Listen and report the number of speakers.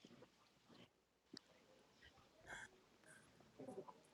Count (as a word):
zero